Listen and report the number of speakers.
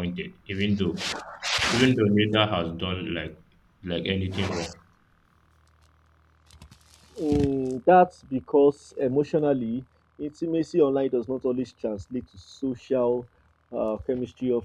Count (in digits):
2